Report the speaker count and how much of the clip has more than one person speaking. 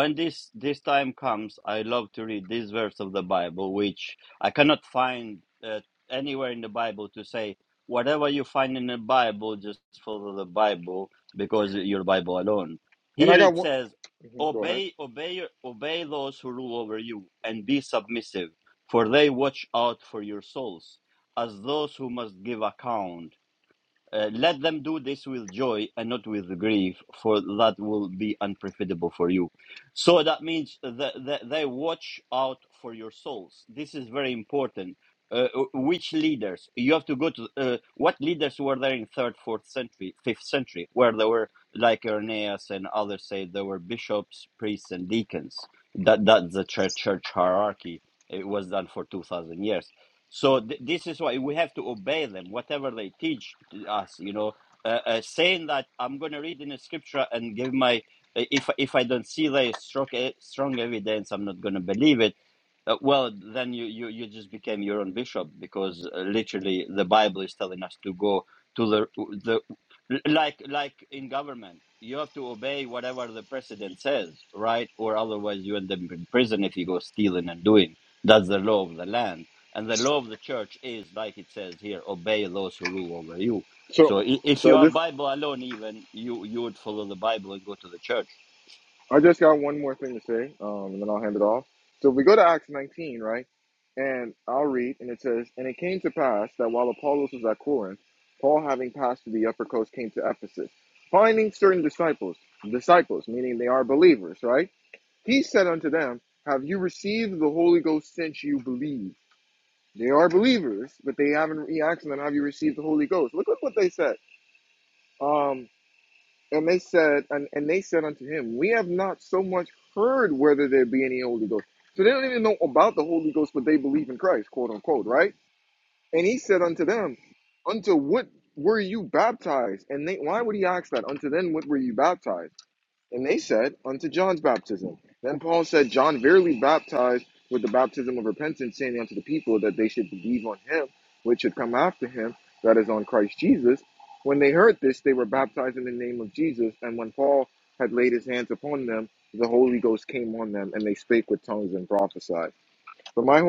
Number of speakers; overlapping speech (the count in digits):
2, about 1%